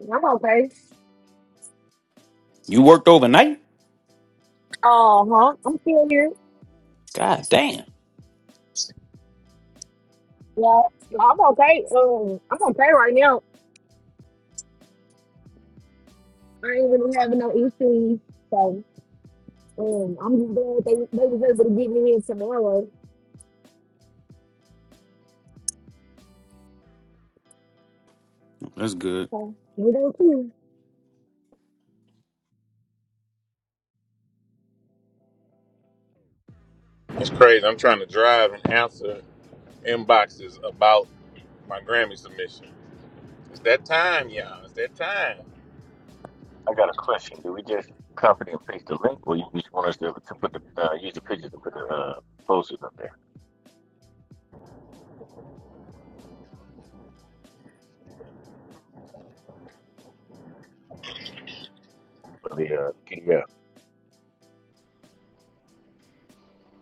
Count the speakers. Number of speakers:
4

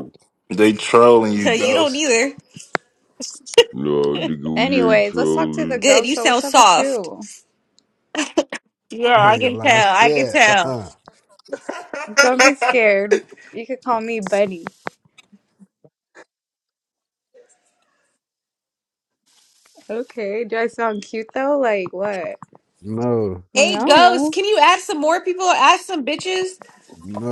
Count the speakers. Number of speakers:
5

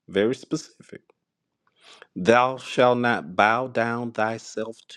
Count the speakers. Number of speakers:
1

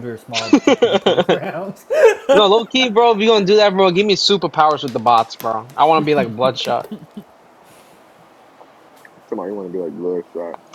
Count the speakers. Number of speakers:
3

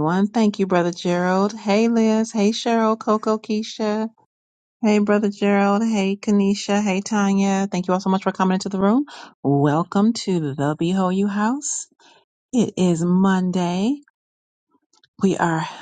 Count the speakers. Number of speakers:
1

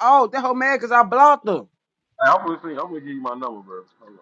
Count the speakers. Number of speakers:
2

